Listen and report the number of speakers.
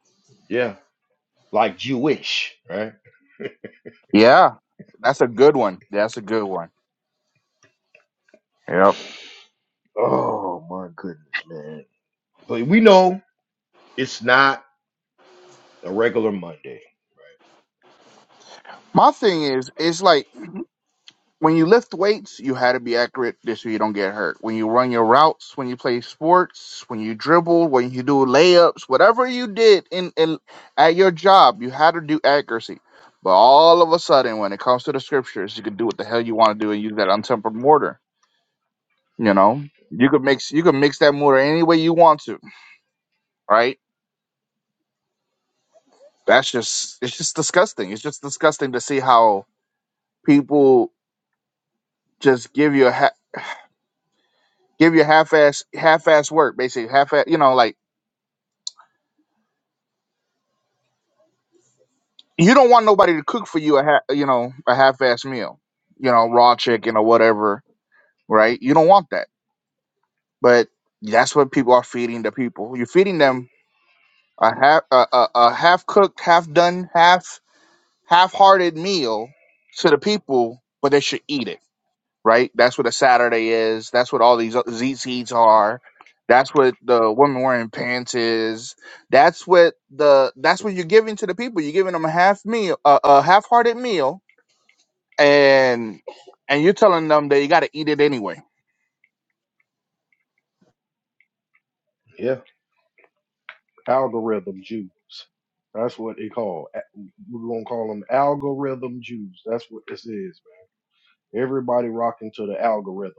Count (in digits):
3